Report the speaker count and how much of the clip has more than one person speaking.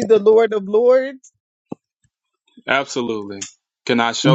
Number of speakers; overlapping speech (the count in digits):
2, about 3%